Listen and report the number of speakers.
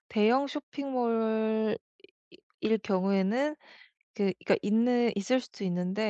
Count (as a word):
one